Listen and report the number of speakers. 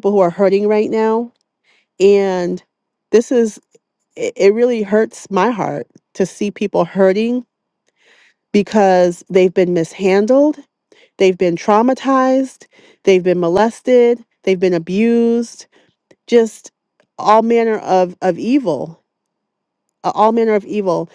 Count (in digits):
1